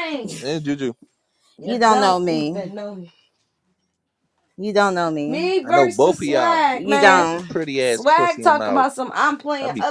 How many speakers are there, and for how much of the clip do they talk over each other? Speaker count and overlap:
three, about 39%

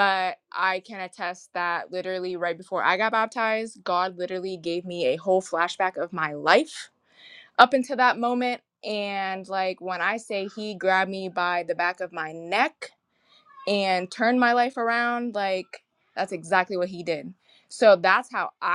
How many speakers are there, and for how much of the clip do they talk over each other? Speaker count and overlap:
one, no overlap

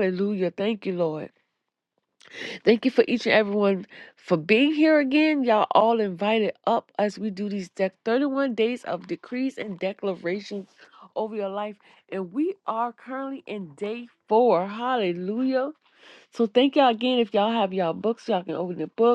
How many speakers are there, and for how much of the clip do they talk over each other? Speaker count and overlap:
one, no overlap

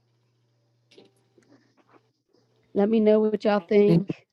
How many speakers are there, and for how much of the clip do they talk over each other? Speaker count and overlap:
one, no overlap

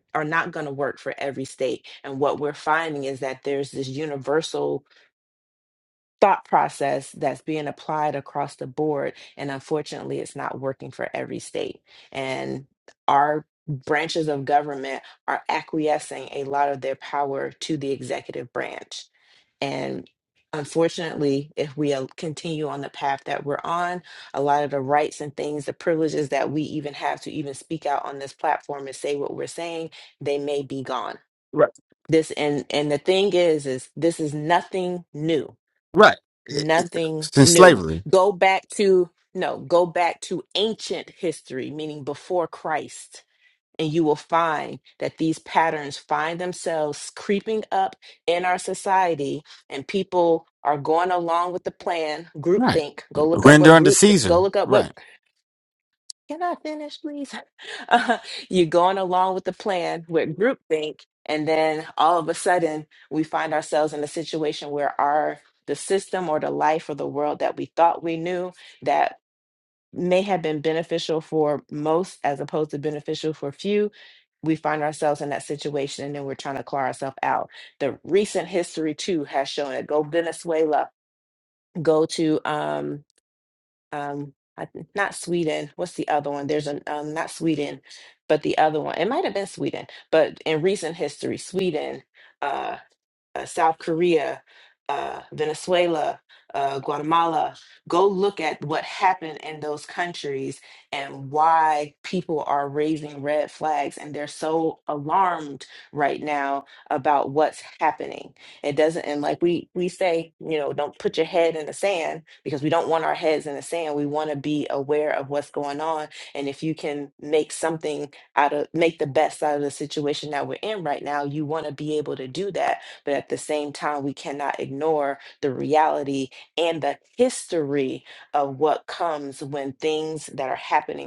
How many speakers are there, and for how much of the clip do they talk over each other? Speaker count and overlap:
two, about 2%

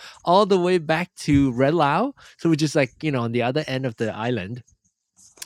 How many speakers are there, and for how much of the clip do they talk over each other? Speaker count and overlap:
one, no overlap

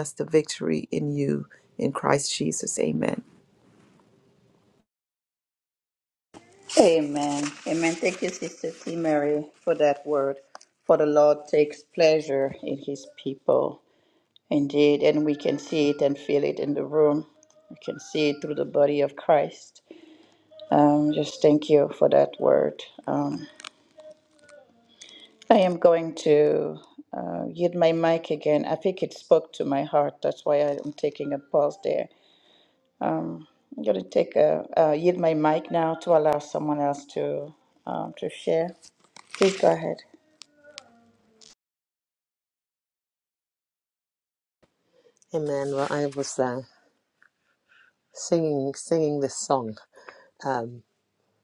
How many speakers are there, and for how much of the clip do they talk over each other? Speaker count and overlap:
three, no overlap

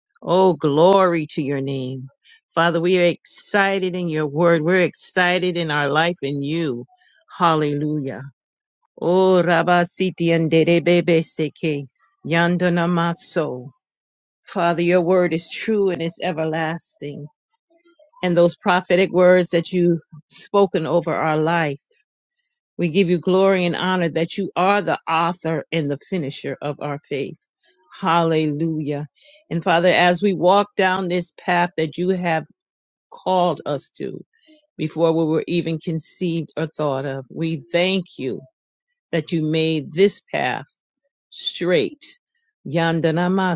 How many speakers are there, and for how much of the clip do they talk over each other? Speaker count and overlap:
one, no overlap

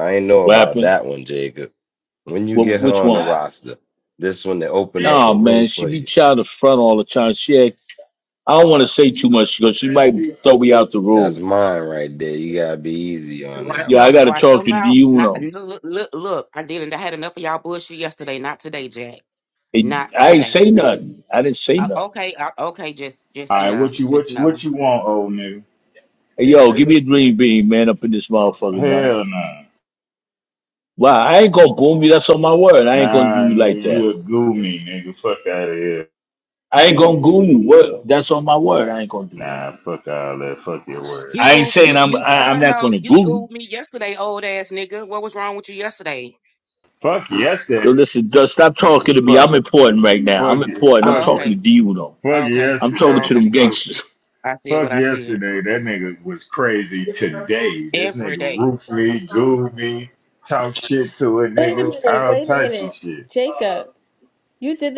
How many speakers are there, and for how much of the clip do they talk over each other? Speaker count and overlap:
five, about 25%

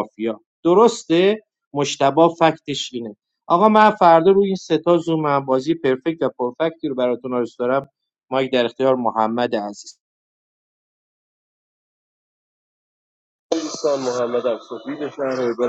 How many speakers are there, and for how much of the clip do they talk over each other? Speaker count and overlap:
two, no overlap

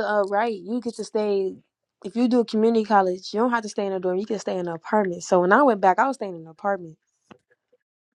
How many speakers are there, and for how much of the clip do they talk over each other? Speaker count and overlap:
one, no overlap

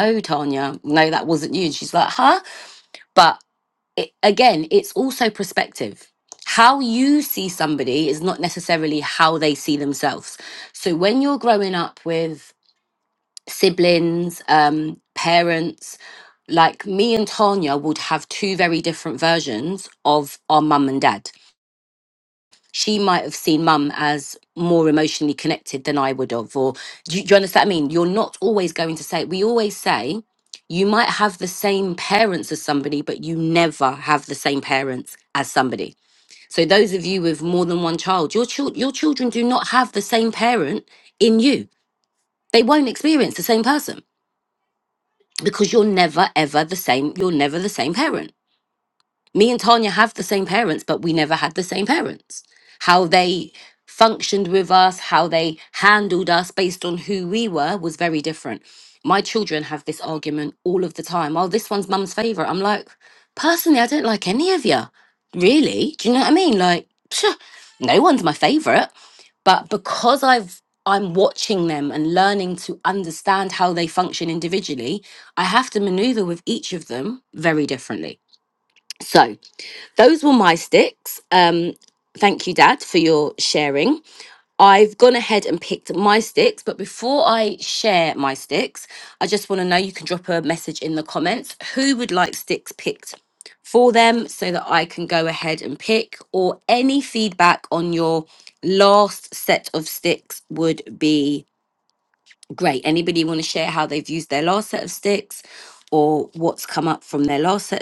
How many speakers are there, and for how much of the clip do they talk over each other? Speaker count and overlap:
one, no overlap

